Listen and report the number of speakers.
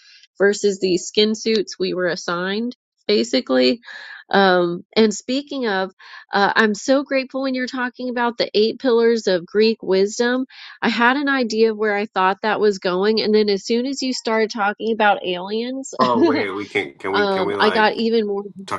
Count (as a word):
two